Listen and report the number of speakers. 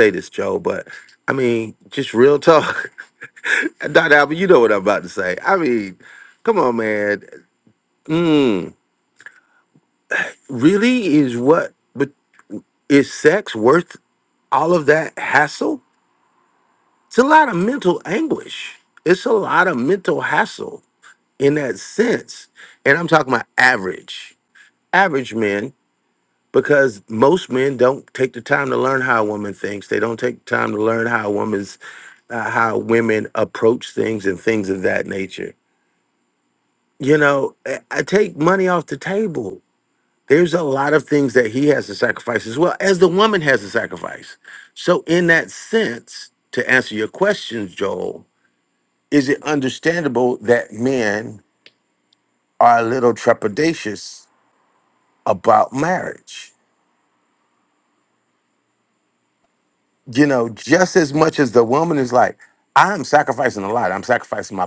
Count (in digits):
1